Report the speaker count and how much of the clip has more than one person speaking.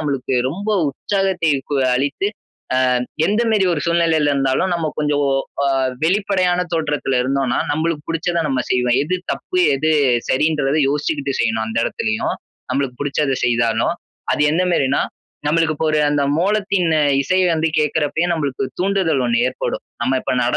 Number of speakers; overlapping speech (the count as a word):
one, no overlap